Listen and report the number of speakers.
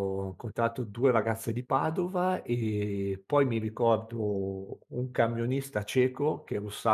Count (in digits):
1